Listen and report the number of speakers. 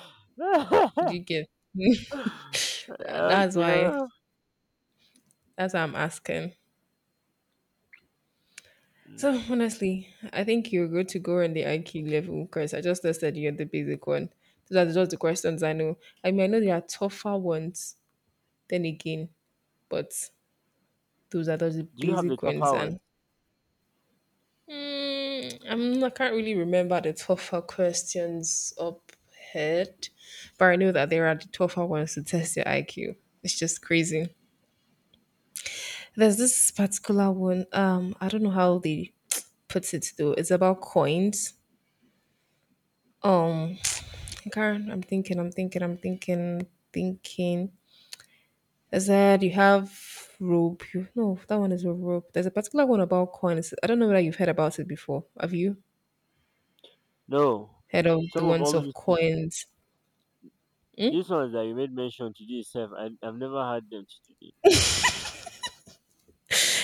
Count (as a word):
two